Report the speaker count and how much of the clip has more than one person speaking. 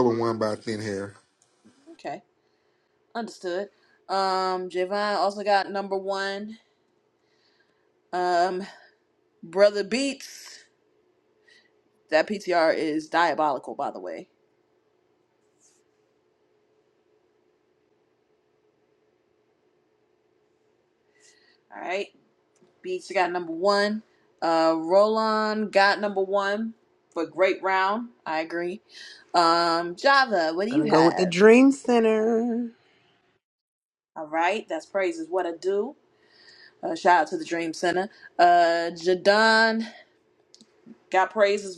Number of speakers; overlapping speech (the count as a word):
three, about 1%